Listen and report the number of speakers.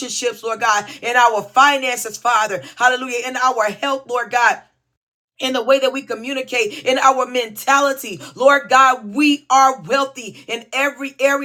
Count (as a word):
one